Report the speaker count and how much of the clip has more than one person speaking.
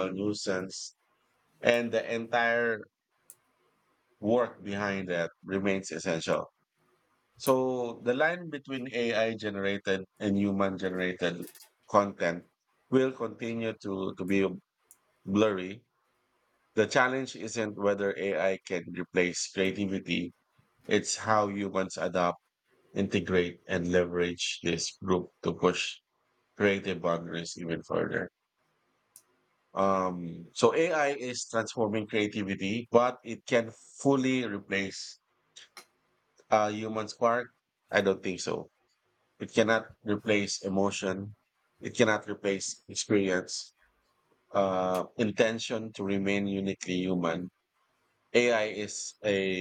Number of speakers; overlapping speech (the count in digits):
1, no overlap